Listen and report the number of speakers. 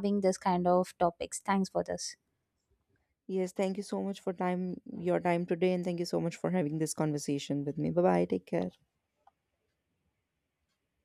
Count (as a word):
two